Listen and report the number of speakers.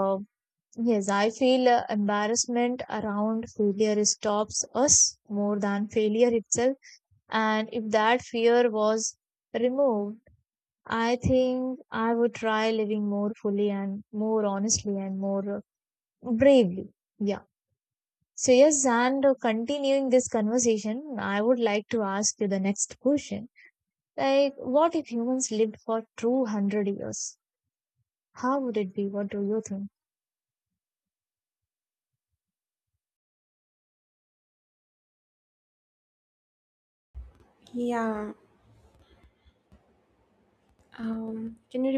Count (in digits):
2